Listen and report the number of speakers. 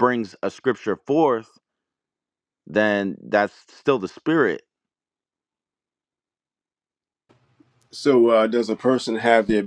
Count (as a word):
two